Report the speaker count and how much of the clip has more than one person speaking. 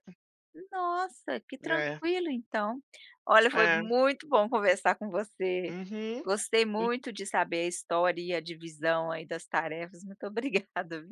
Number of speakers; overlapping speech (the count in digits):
2, about 8%